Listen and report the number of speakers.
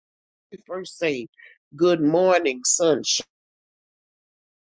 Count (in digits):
1